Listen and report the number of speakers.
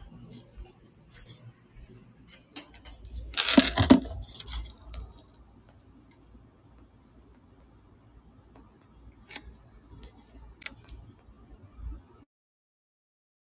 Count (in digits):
0